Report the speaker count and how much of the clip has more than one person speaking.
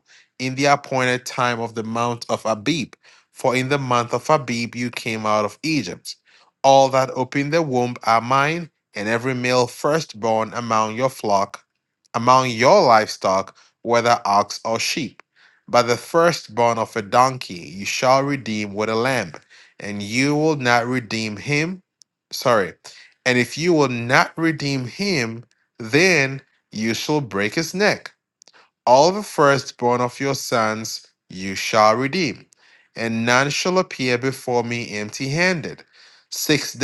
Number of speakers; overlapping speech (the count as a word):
one, no overlap